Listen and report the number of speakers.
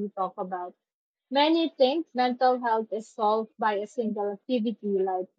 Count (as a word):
one